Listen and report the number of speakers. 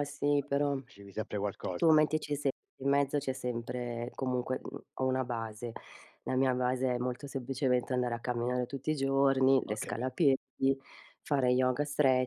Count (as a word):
two